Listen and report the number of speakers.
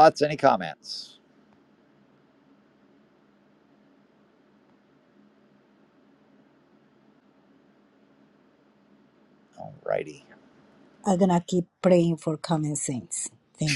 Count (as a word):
two